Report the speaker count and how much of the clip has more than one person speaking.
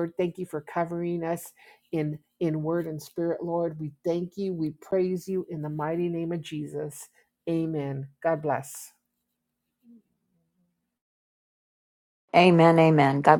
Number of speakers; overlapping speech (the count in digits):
2, no overlap